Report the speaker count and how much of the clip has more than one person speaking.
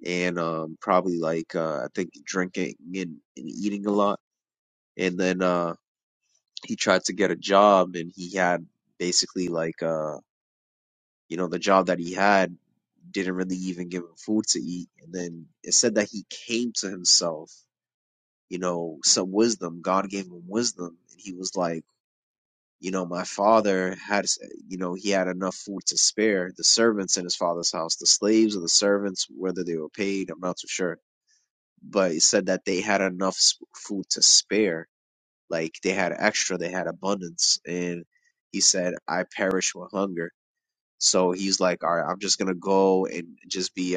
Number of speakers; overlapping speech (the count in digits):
1, no overlap